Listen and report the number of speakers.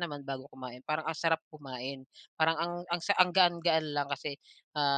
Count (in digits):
1